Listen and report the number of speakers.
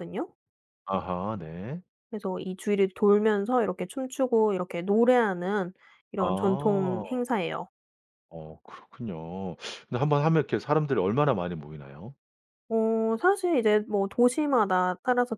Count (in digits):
2